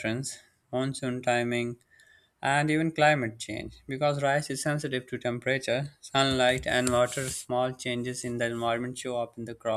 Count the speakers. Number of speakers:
1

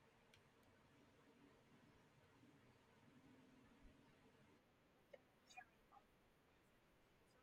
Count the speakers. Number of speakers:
0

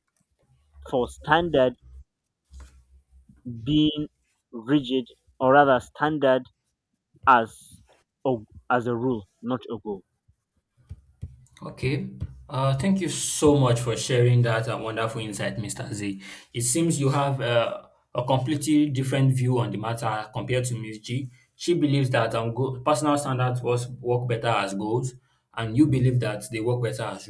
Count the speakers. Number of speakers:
2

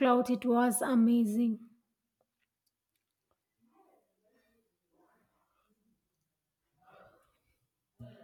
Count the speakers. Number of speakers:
1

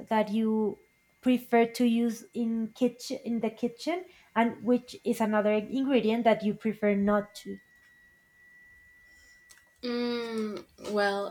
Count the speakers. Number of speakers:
2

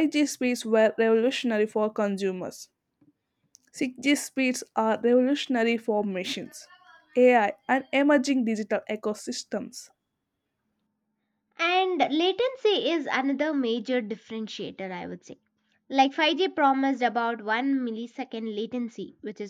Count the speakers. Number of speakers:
2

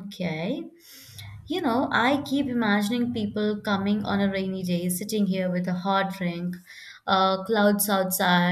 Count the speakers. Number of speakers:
1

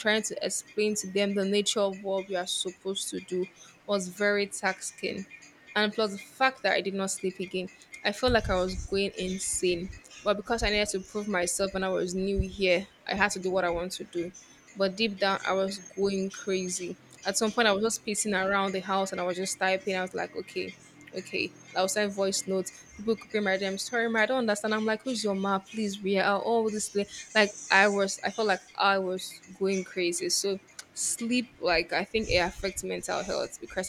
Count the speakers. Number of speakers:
1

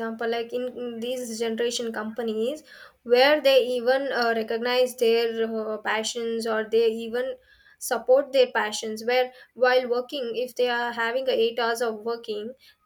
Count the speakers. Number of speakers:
1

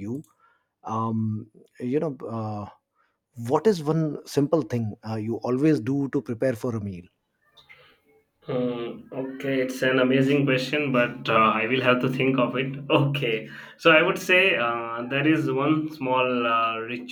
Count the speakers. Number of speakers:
2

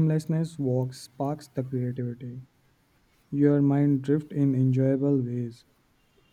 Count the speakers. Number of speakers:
1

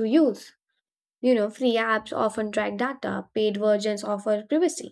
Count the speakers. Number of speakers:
1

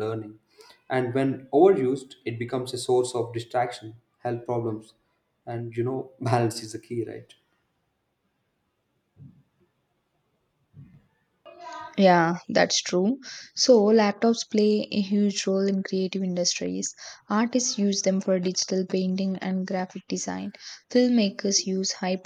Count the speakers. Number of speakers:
2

